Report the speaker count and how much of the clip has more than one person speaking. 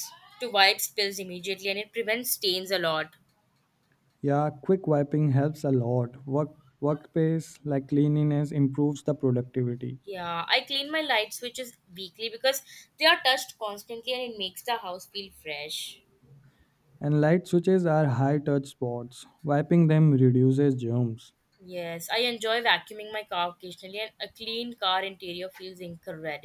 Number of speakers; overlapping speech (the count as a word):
two, no overlap